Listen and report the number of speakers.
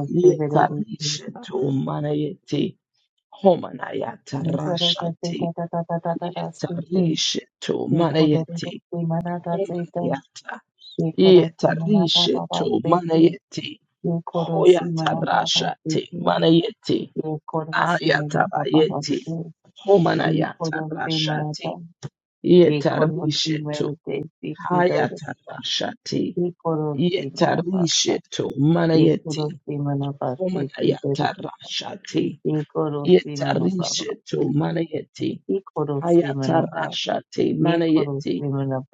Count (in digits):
2